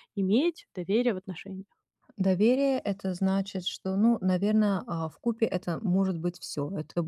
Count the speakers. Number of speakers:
two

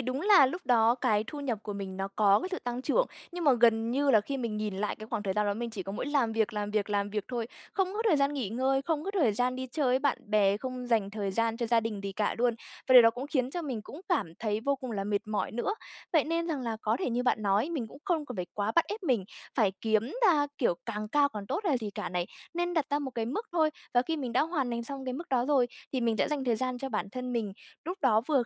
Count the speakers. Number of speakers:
one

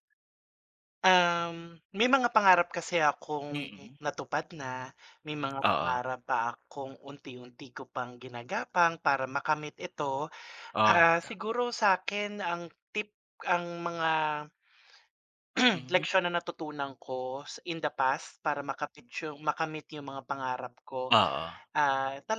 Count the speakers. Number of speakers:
two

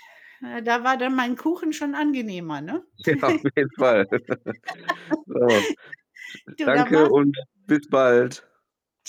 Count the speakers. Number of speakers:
two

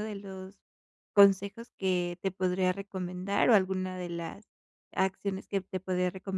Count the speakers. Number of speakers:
one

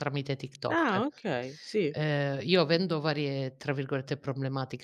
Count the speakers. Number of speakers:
two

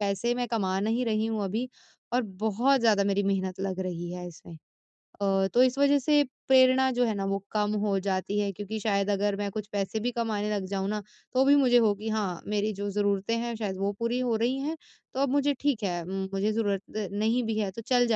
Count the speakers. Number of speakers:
one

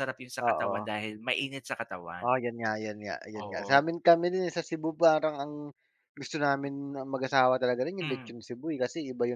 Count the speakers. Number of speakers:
two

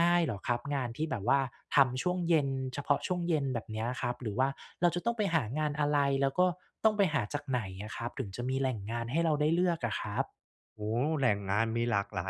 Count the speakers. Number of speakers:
two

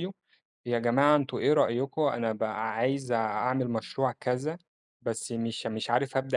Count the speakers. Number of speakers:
one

